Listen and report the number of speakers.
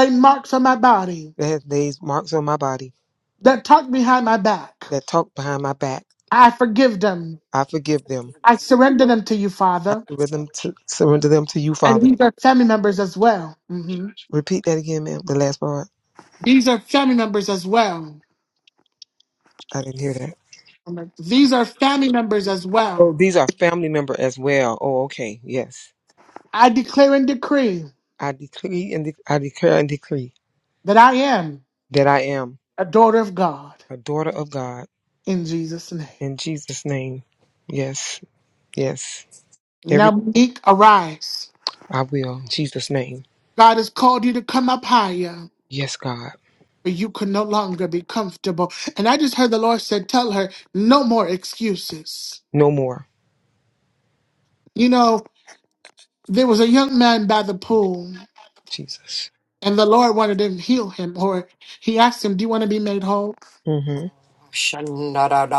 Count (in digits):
3